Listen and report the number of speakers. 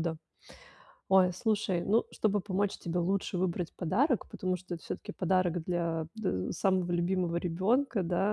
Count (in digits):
1